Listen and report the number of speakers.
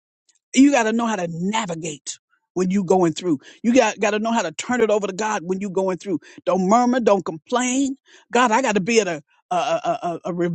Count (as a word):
one